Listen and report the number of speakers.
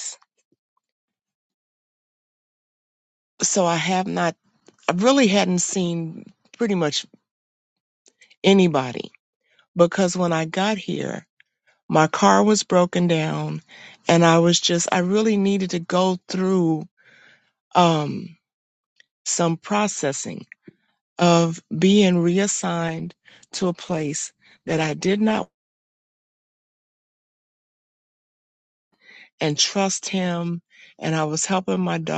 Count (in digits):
1